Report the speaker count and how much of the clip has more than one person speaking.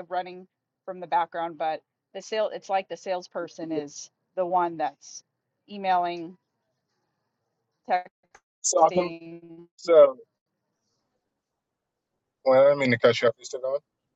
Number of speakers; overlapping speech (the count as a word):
two, under 1%